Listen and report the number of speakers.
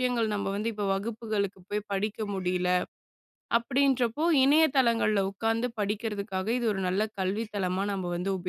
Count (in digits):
1